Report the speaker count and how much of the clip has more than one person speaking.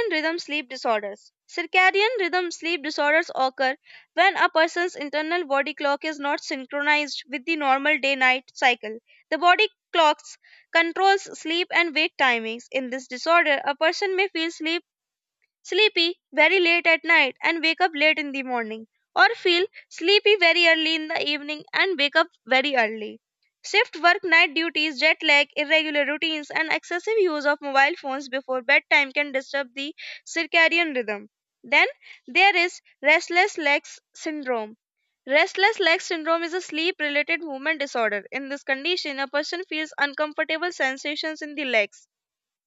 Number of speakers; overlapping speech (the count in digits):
1, no overlap